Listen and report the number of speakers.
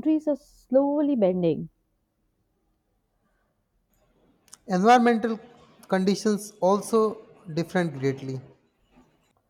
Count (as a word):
two